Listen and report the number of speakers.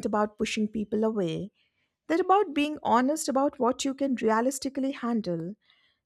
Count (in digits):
1